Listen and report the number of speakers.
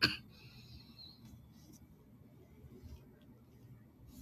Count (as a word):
zero